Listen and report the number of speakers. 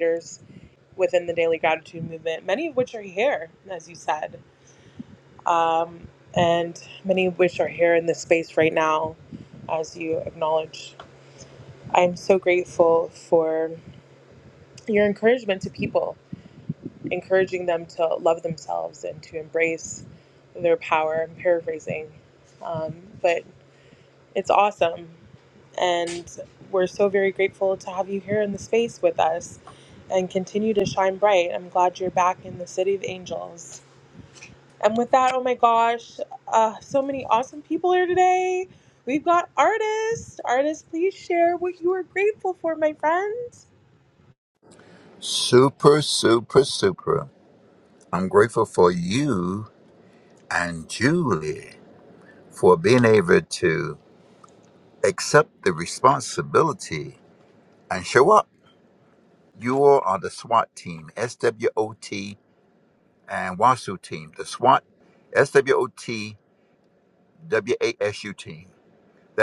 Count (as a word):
two